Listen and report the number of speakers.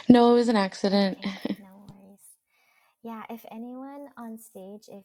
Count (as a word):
two